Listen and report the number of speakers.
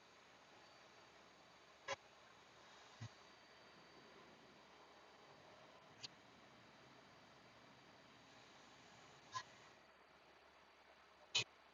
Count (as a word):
zero